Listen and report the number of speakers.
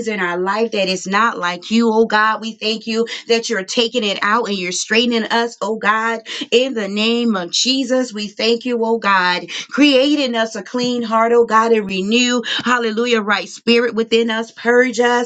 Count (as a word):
one